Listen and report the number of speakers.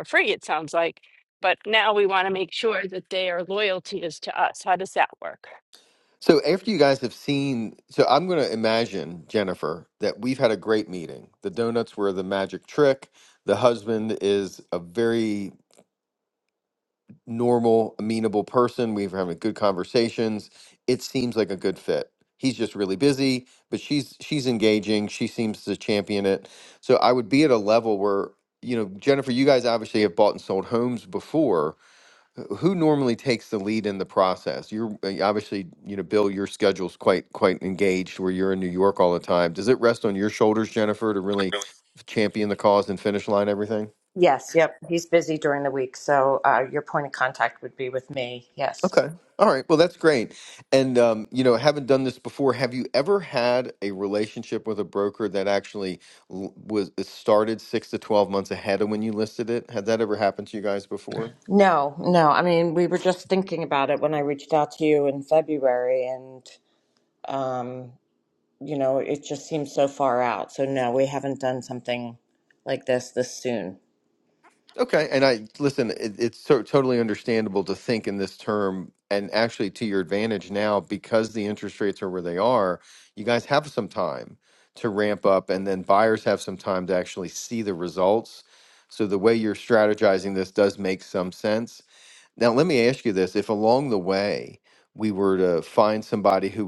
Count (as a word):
three